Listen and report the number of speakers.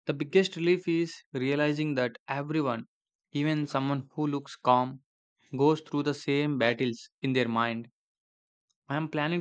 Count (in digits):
1